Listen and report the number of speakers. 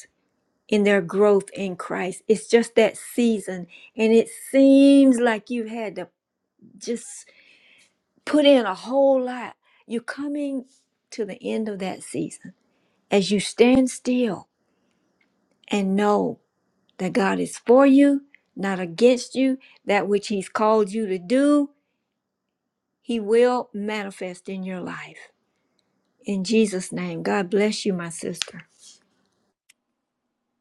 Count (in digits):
1